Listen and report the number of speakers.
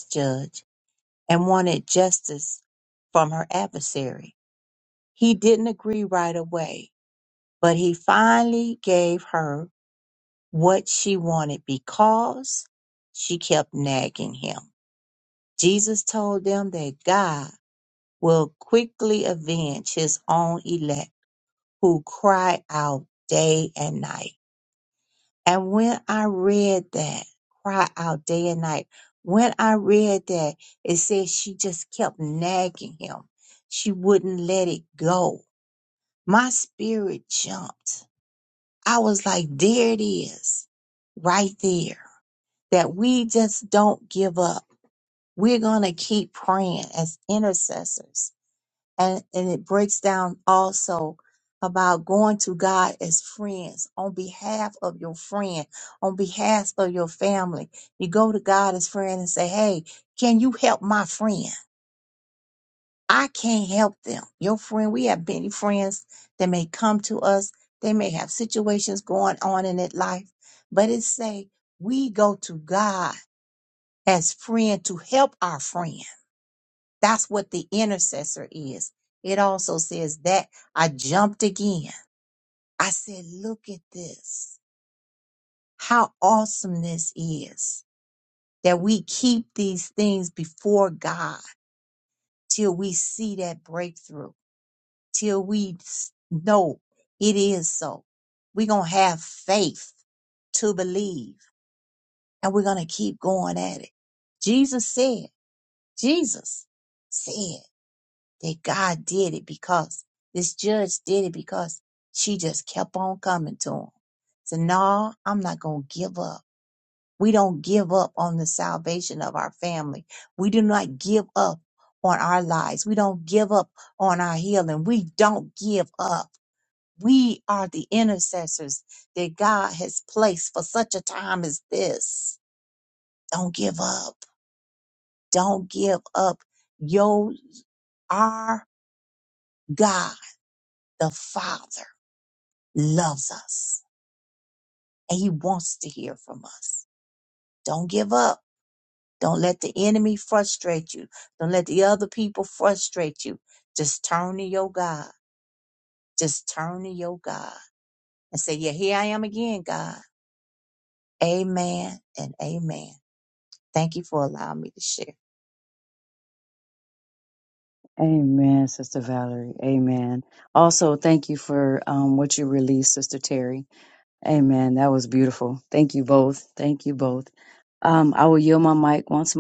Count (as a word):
two